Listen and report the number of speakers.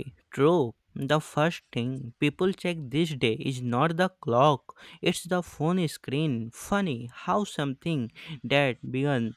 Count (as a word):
one